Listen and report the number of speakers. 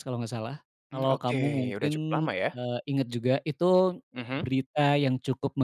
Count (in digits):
2